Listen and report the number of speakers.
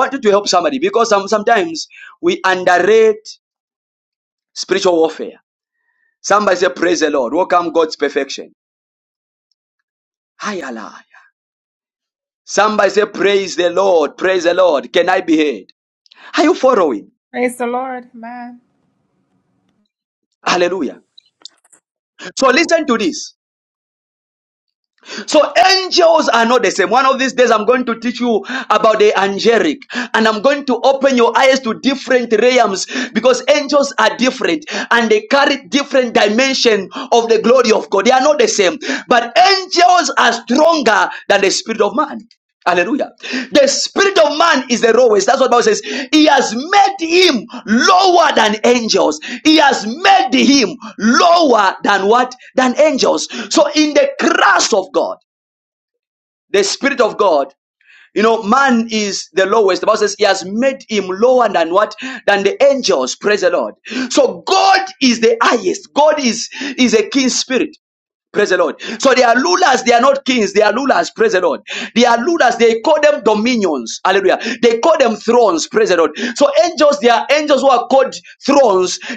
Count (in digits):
2